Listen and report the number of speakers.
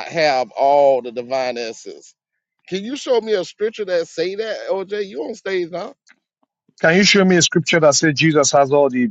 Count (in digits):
2